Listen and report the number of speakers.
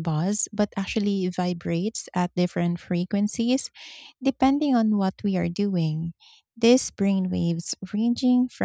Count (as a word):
one